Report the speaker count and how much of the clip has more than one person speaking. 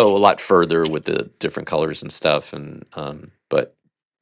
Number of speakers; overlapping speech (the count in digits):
1, no overlap